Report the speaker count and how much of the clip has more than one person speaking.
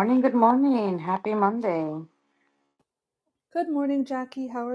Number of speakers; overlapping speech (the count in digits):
2, no overlap